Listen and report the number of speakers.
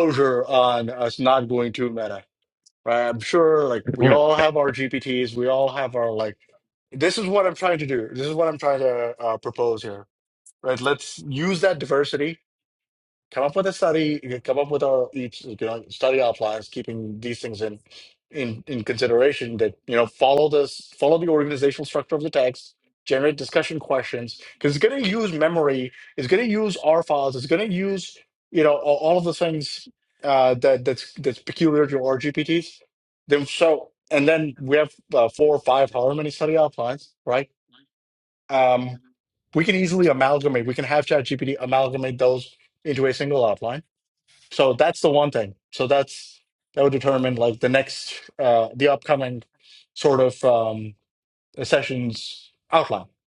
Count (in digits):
1